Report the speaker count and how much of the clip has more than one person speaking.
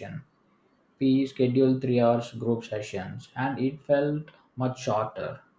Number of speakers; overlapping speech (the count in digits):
1, no overlap